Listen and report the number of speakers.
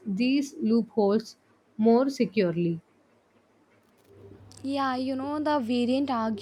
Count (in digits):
2